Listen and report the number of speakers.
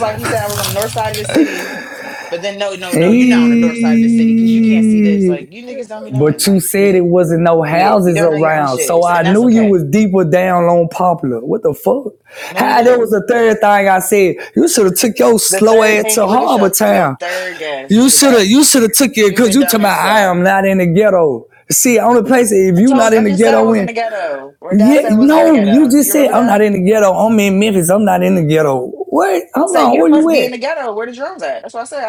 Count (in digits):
2